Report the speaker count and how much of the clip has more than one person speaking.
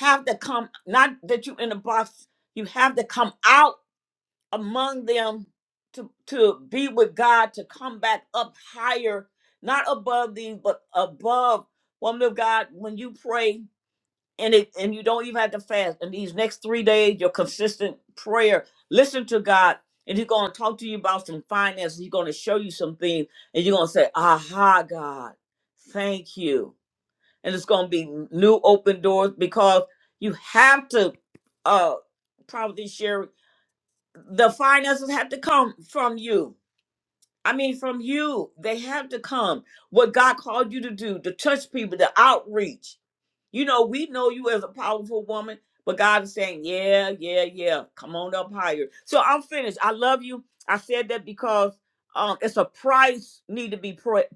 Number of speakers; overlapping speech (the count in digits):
1, no overlap